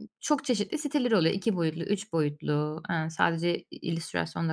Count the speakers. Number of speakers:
1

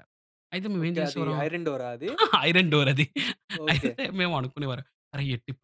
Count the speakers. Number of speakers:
2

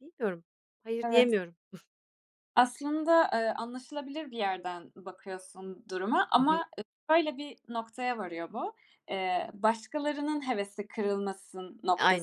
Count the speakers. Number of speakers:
2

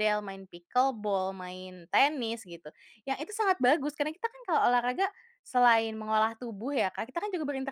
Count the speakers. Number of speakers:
1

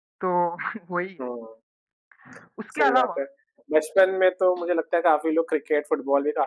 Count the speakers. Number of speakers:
2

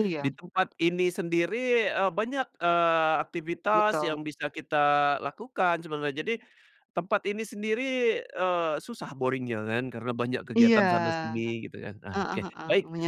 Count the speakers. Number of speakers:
2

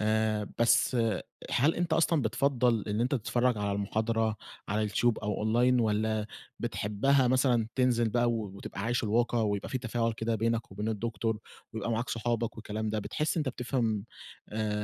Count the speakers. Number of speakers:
1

